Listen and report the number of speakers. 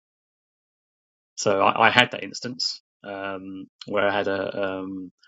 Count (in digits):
1